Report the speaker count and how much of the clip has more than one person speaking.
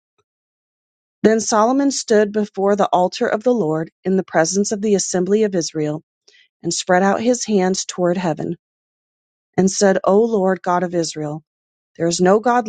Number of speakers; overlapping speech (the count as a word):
one, no overlap